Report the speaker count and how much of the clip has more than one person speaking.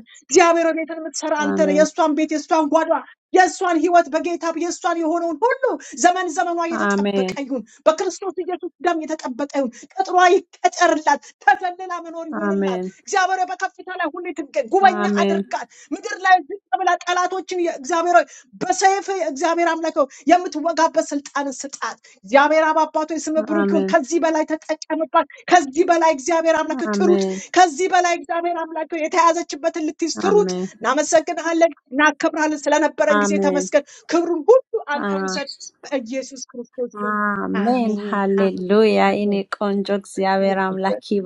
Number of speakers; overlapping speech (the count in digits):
2, about 16%